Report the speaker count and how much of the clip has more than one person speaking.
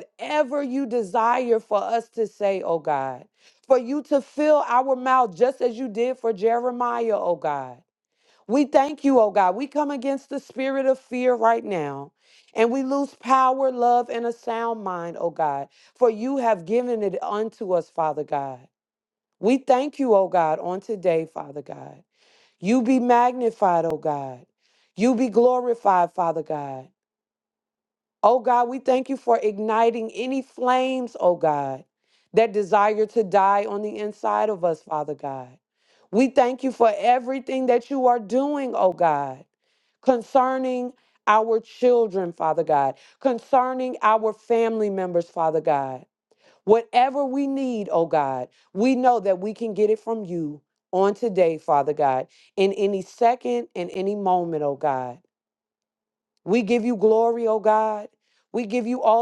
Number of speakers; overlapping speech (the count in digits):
1, no overlap